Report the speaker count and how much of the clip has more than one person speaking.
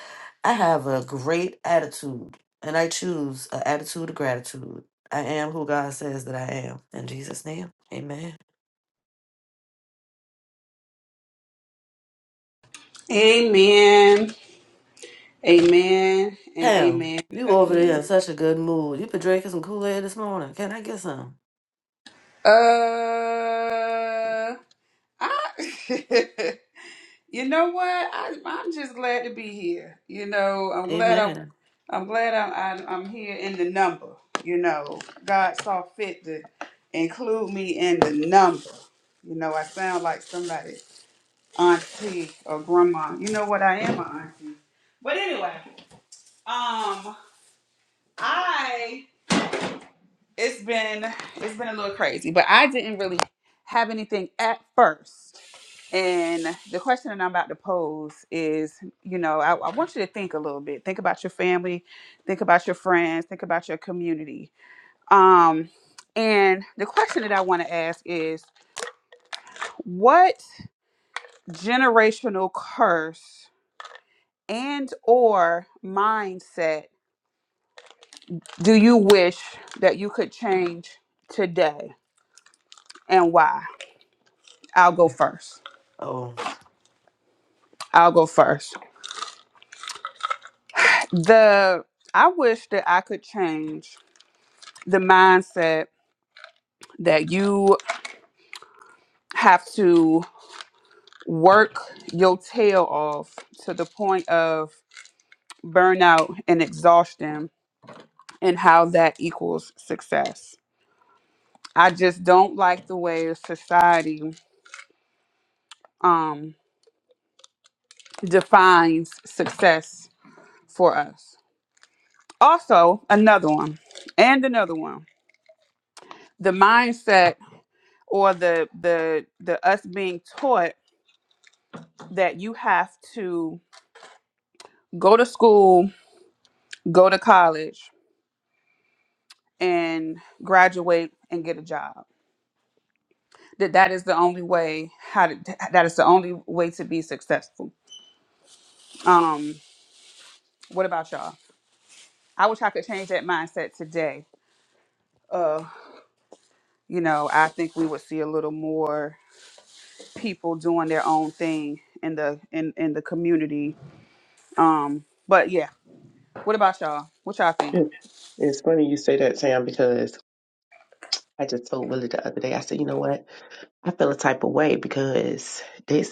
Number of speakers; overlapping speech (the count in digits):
3, about 1%